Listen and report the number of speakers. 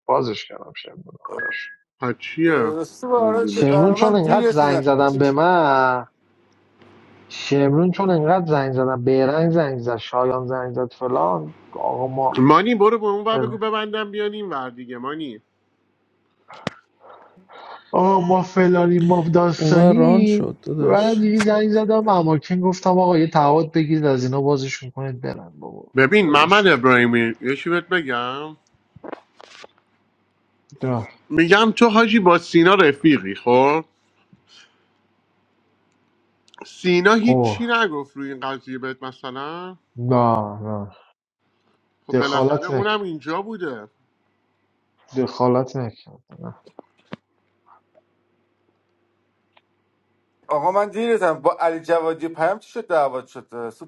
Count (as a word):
four